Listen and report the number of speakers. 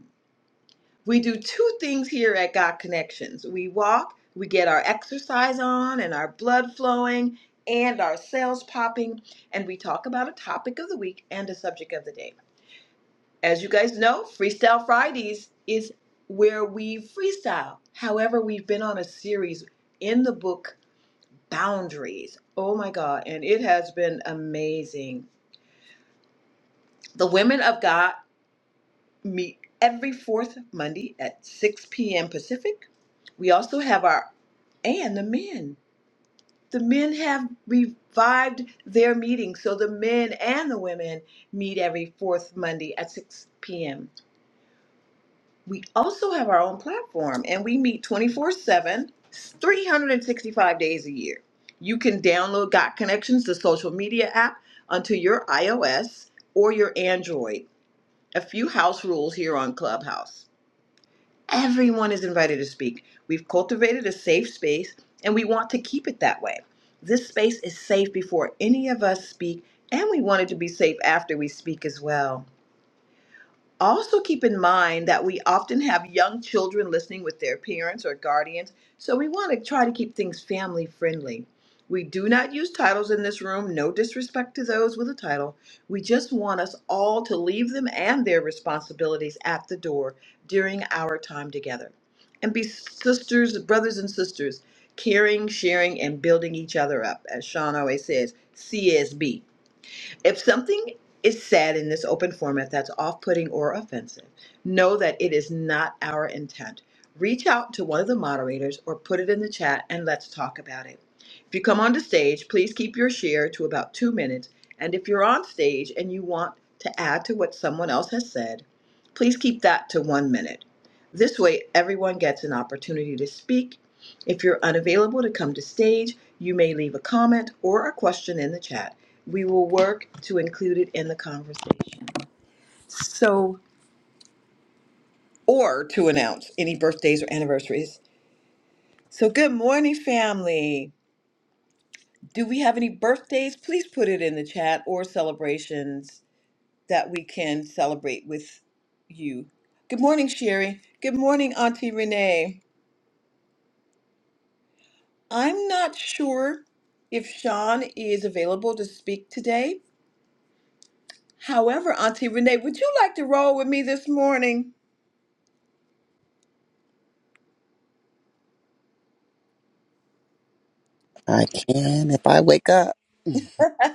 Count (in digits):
2